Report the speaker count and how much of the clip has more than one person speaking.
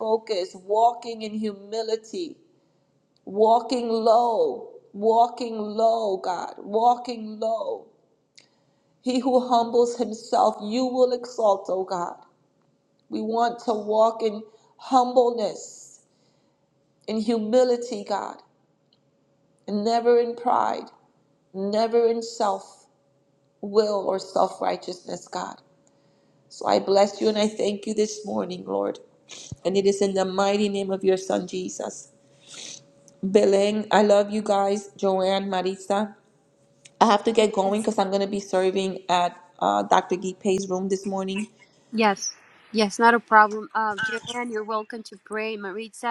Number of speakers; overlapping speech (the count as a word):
two, no overlap